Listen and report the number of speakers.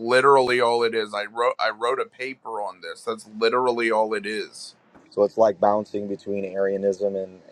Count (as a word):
two